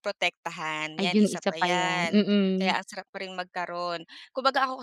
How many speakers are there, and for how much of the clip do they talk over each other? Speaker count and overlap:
two, about 29%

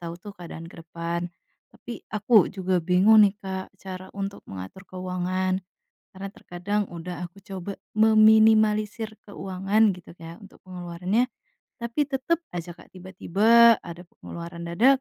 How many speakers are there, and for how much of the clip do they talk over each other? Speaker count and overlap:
one, no overlap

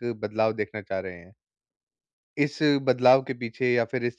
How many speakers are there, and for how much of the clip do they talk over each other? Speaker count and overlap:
one, no overlap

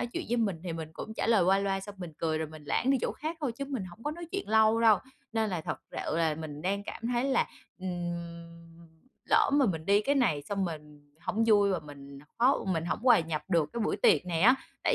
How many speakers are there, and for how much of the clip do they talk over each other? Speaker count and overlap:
one, no overlap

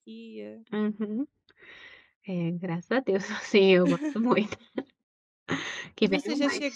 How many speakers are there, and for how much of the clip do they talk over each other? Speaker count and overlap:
two, about 11%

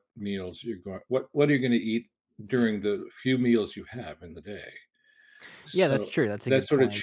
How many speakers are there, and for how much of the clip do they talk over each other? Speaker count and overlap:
two, about 11%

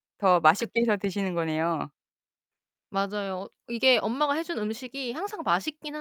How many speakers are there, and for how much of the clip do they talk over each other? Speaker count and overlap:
two, about 1%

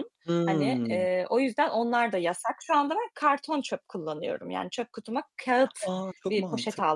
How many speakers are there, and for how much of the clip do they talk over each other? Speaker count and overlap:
two, about 19%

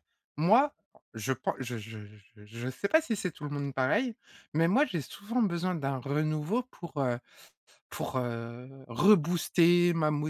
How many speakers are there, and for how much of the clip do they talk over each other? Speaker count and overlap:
one, no overlap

